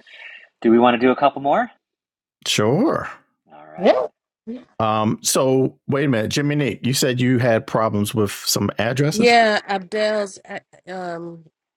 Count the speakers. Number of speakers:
three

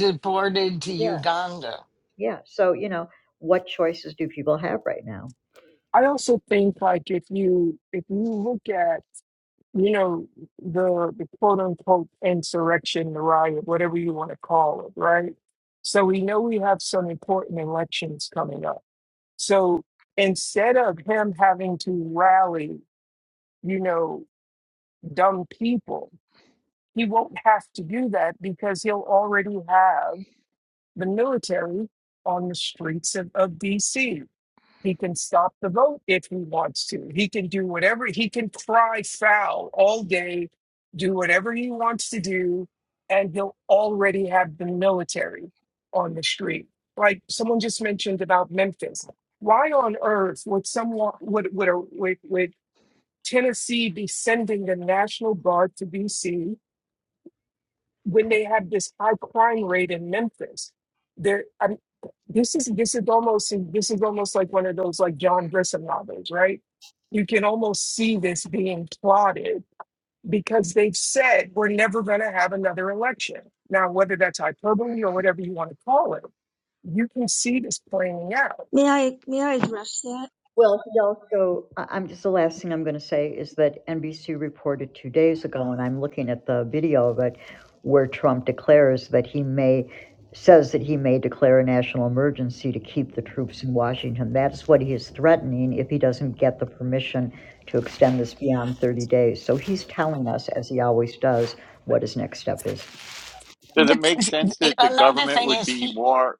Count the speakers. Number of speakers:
five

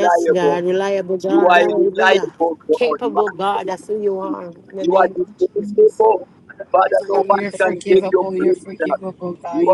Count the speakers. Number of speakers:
three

